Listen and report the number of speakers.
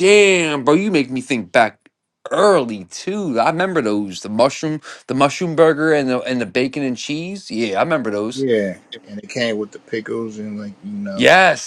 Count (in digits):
2